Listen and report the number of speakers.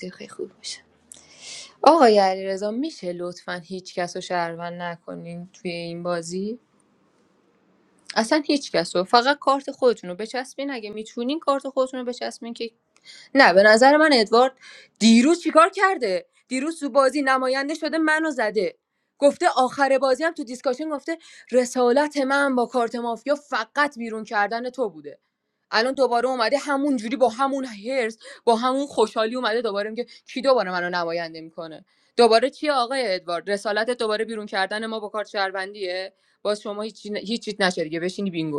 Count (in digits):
1